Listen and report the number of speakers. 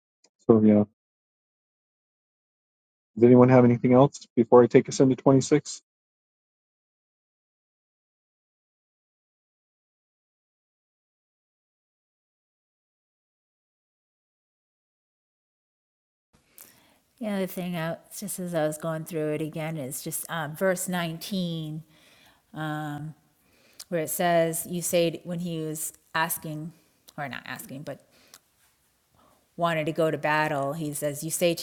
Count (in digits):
2